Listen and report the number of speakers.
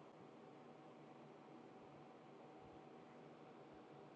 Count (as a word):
zero